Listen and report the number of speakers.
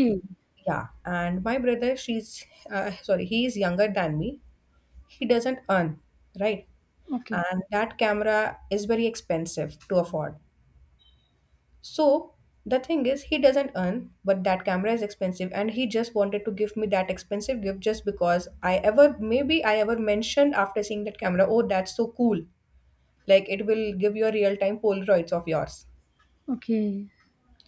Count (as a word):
two